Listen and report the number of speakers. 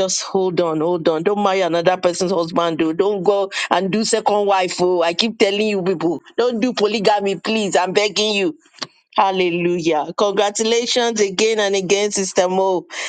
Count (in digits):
1